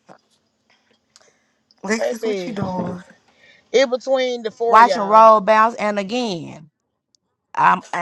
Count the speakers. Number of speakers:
three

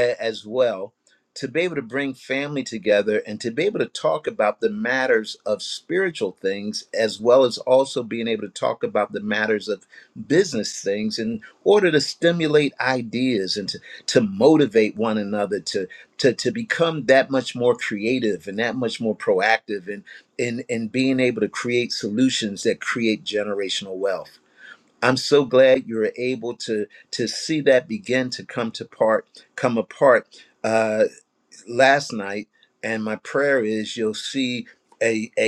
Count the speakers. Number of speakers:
one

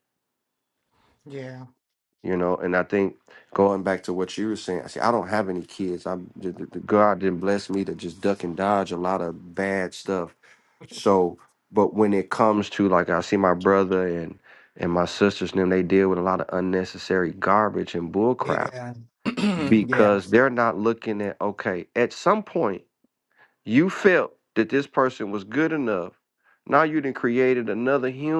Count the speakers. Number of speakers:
two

